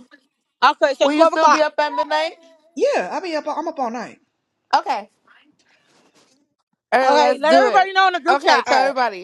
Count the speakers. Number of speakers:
3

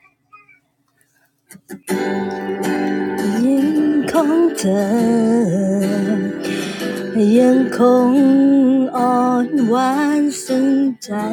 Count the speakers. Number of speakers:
1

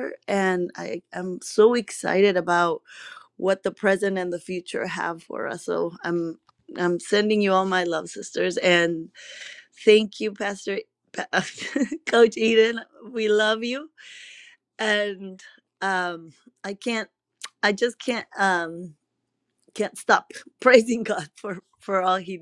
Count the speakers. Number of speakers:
1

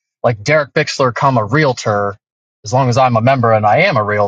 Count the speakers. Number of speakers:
1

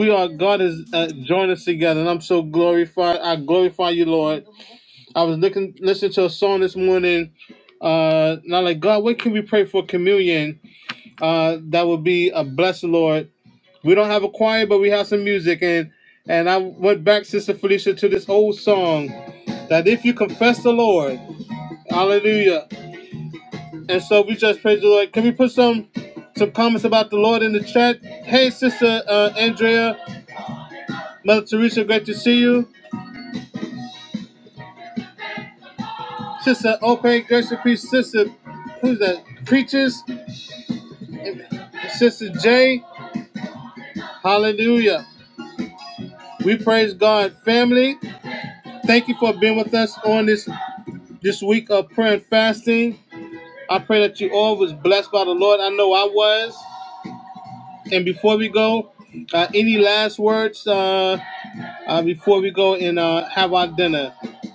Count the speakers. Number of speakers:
1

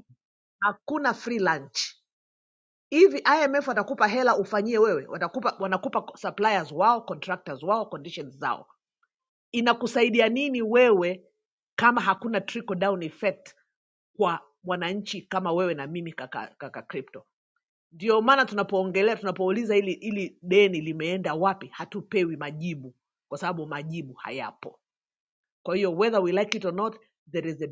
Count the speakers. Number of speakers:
1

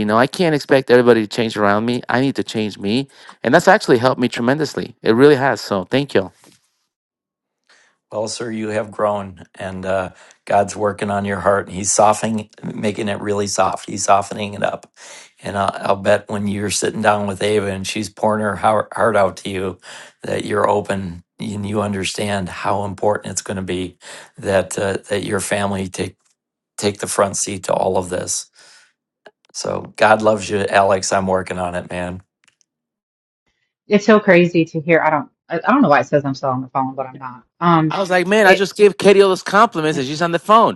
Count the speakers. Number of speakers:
3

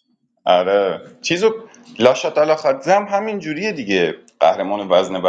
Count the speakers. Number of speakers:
1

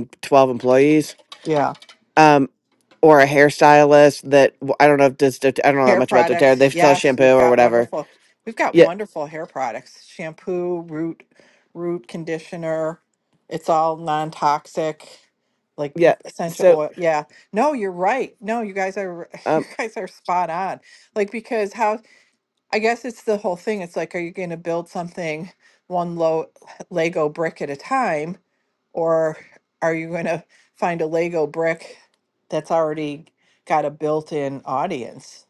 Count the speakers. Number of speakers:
2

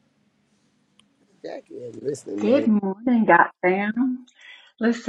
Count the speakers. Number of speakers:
2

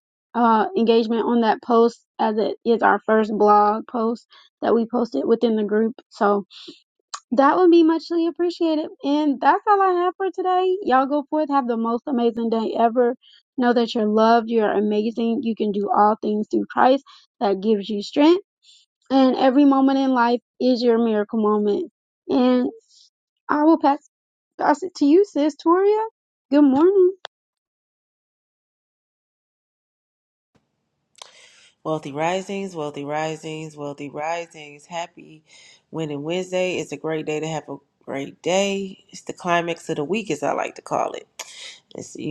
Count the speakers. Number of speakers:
2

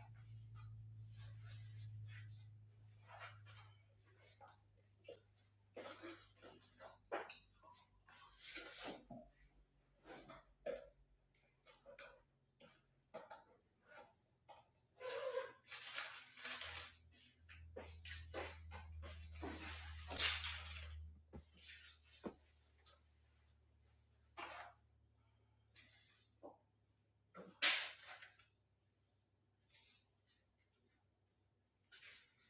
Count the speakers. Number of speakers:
0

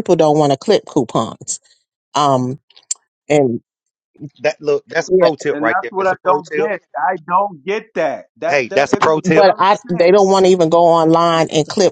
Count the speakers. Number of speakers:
3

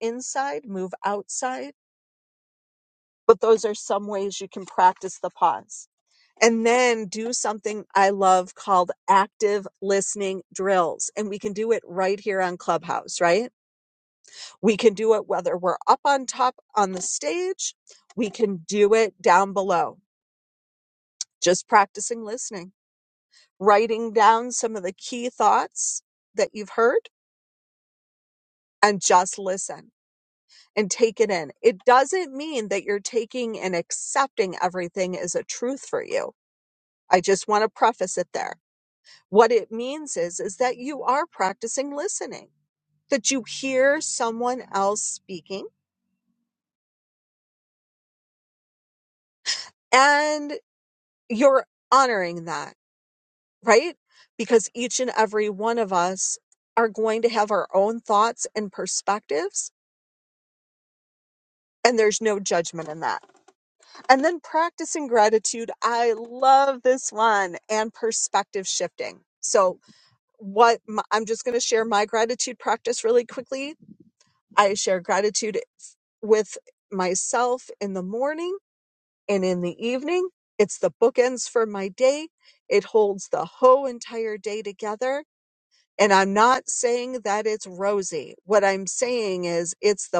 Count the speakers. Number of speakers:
1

